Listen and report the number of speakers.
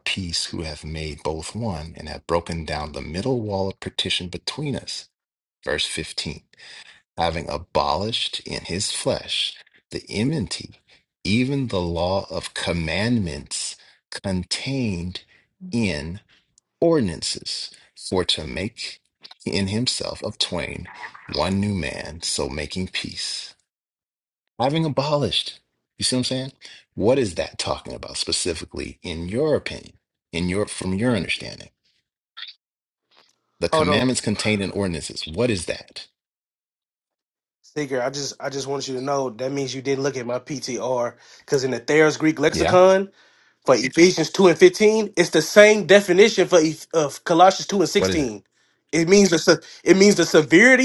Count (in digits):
2